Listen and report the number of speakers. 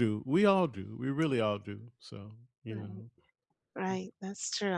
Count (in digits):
2